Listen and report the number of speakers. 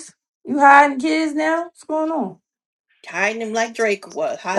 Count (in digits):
2